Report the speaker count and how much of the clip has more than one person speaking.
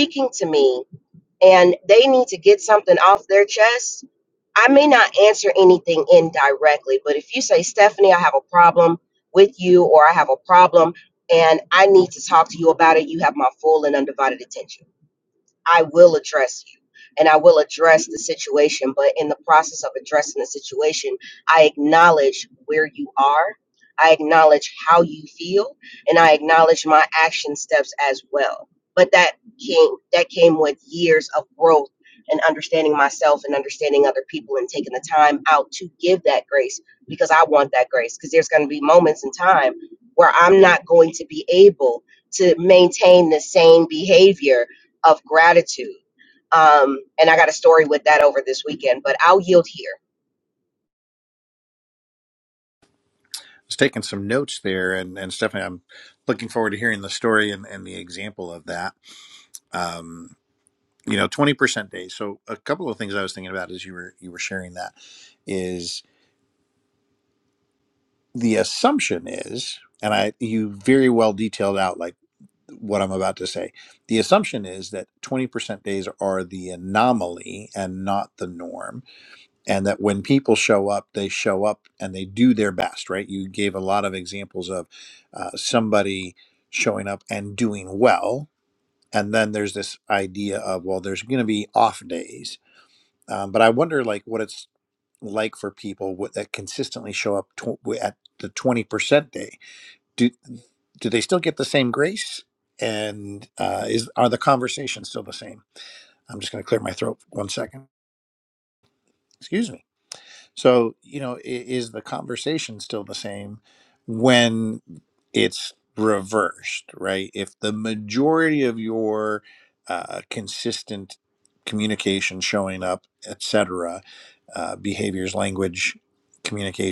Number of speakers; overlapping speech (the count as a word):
two, no overlap